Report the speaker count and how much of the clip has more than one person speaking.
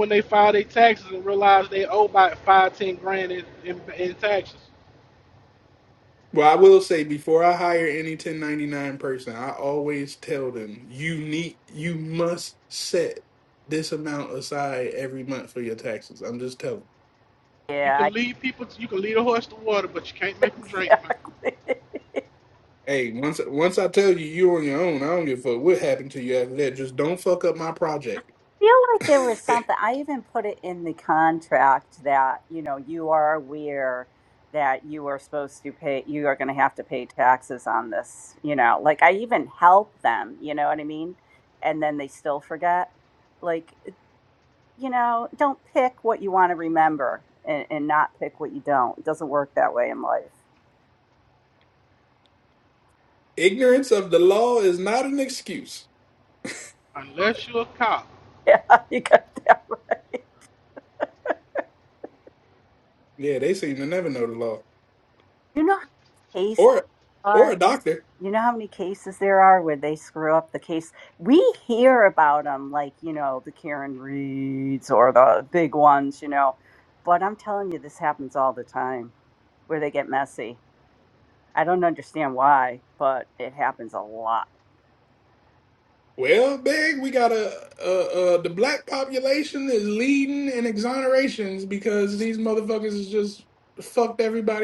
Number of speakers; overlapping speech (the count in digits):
3, about 1%